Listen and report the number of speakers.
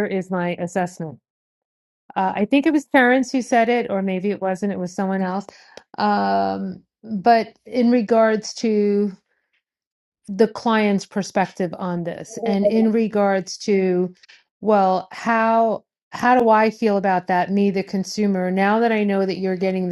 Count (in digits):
1